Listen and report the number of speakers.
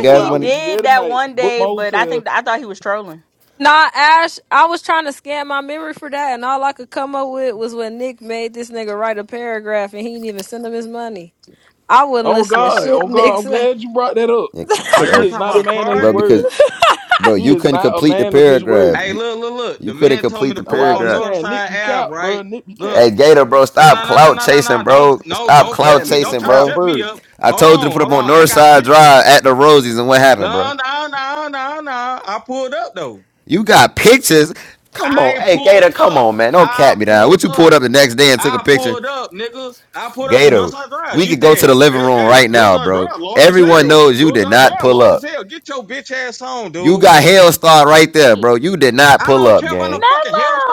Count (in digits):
5